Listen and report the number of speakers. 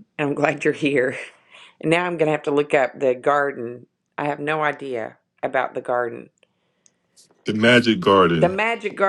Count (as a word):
two